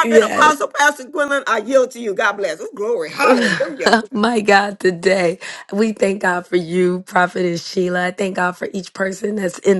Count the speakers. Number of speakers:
2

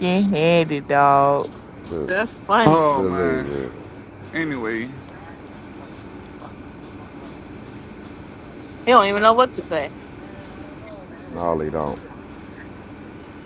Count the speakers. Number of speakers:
4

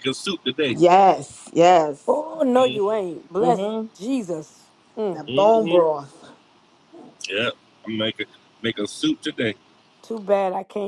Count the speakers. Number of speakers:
3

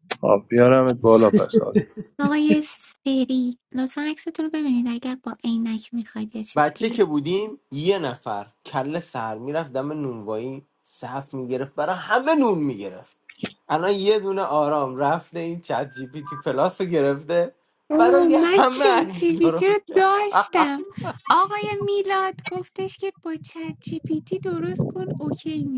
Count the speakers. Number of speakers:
3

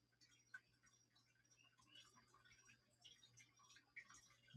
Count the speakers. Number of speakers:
0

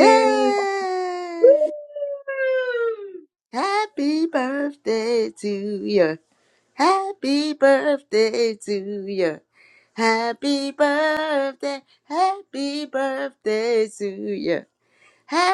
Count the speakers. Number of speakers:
2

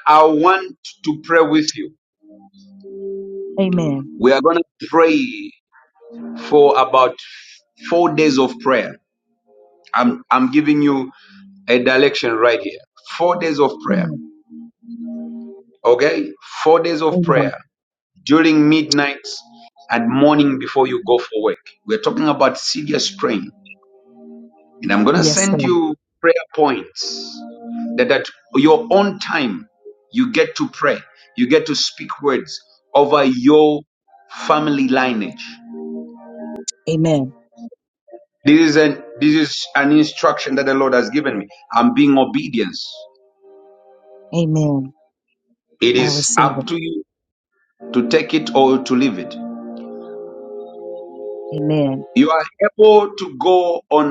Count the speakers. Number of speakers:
2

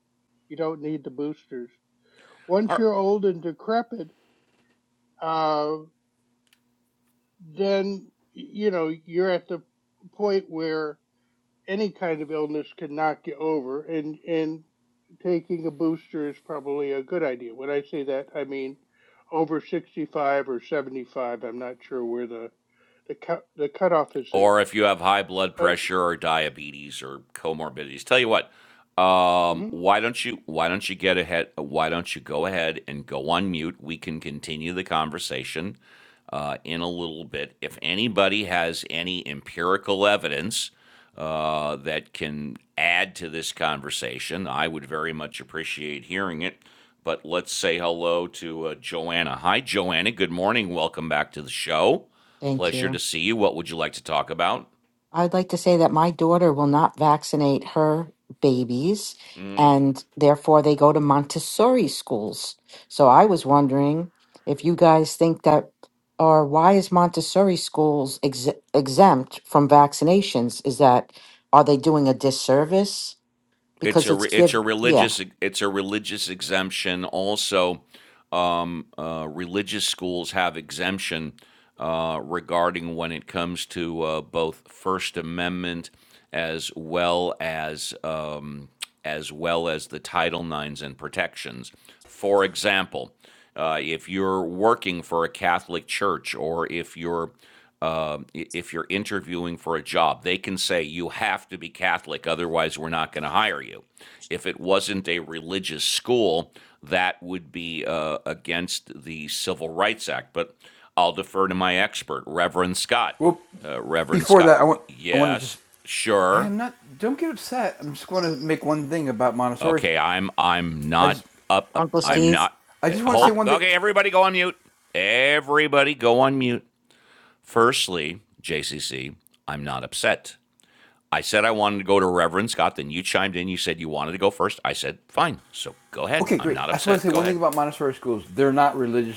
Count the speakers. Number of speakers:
4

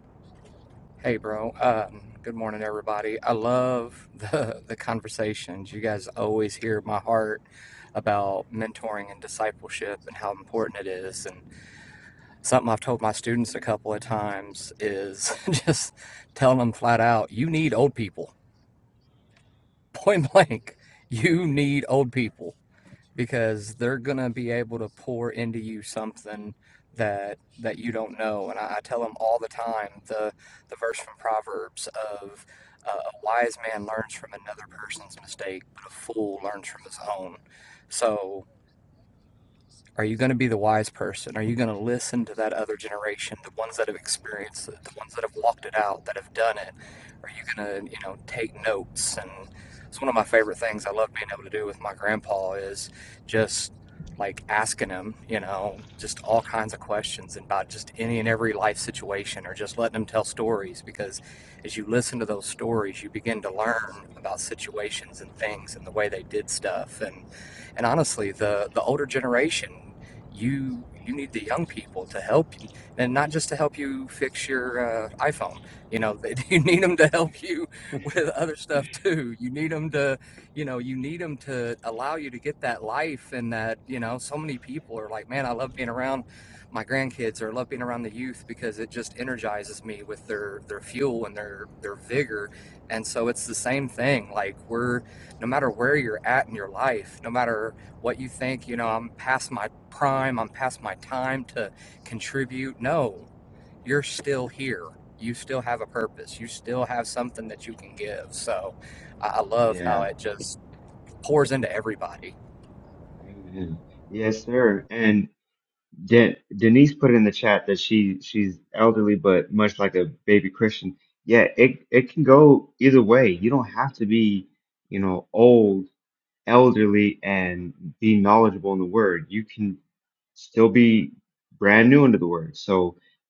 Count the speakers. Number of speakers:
2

